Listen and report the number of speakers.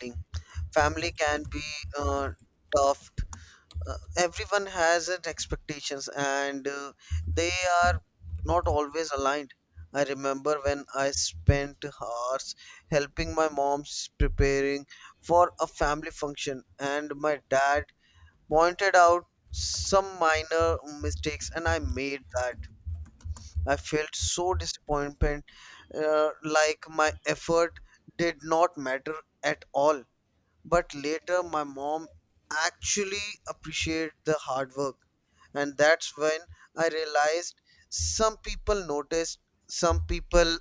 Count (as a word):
one